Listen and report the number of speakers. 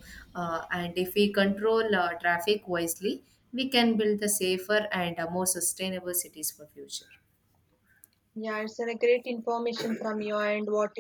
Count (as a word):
two